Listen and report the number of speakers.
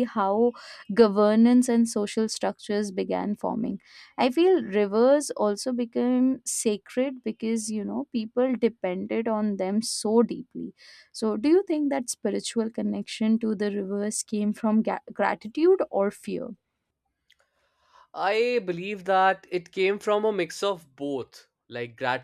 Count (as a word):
two